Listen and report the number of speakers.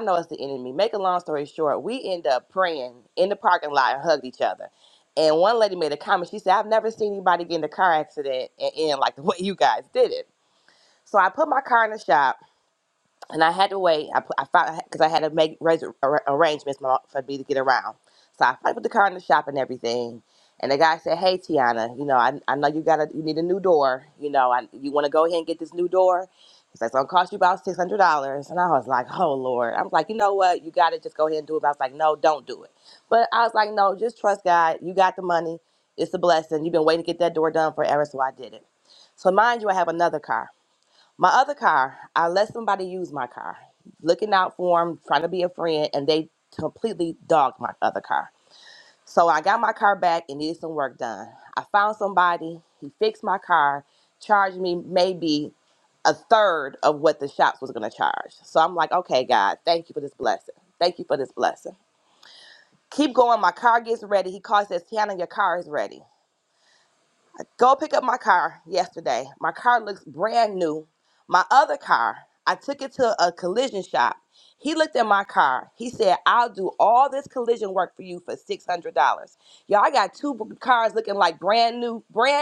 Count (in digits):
1